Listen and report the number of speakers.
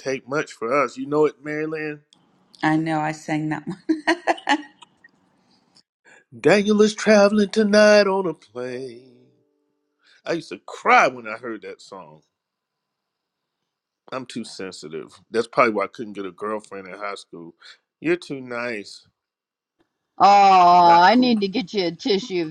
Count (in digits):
3